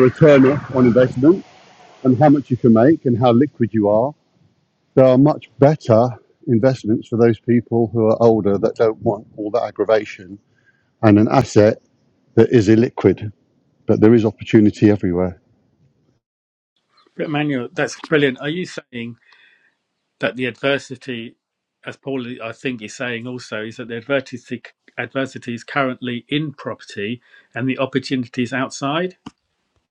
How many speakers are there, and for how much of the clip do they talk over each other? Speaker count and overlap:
2, no overlap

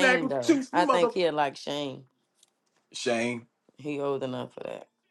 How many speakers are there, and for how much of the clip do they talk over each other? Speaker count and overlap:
2, about 23%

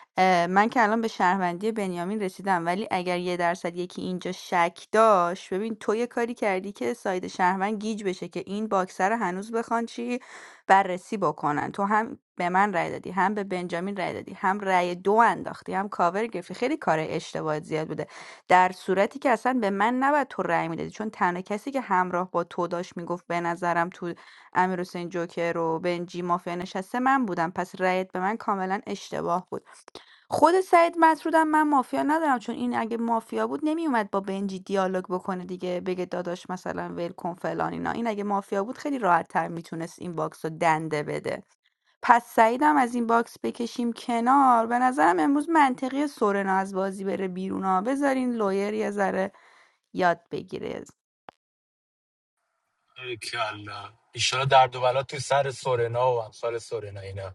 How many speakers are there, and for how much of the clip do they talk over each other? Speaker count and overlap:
2, no overlap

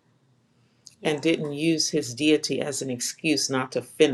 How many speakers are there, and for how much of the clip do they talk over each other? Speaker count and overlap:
1, no overlap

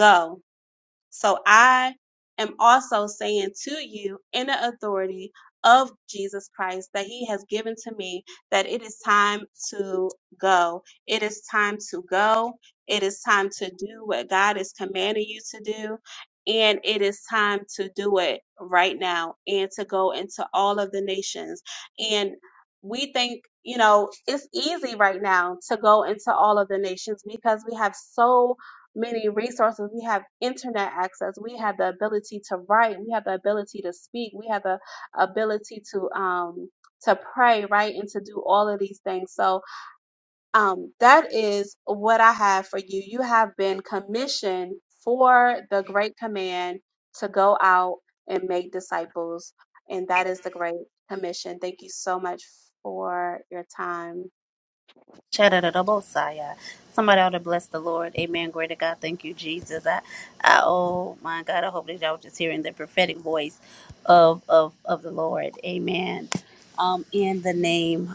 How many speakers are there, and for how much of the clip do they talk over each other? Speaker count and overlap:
2, no overlap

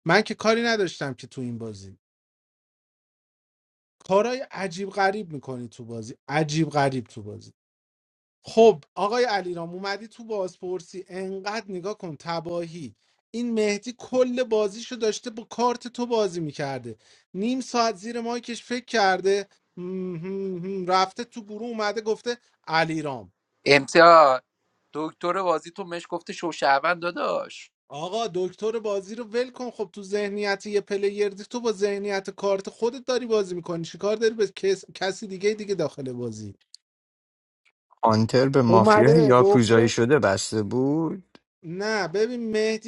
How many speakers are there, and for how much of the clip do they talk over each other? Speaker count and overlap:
3, about 3%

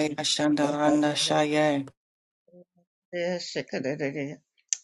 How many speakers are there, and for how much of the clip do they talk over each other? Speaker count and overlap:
2, about 5%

